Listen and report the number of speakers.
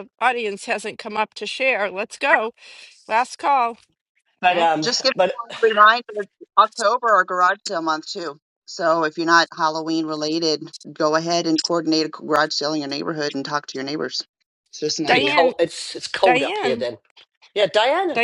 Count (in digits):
3